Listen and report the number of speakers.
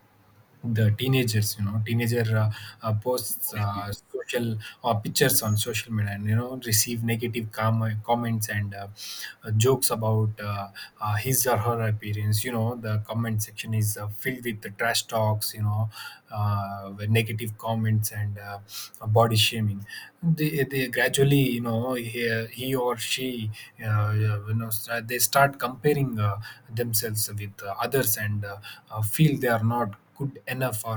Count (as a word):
one